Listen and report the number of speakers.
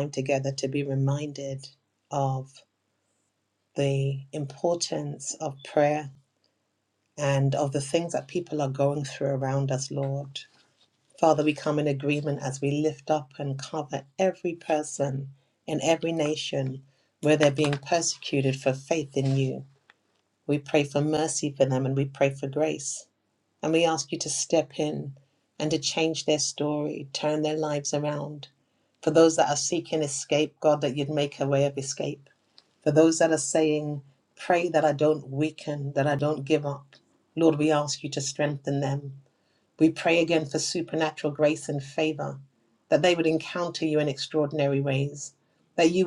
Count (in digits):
1